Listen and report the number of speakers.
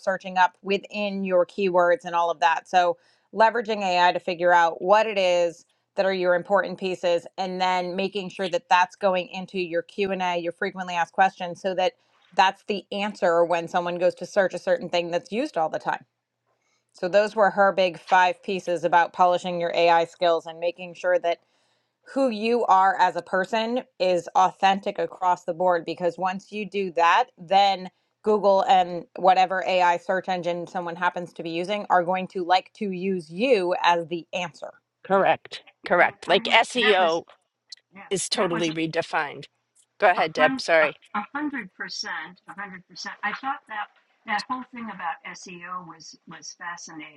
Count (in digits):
3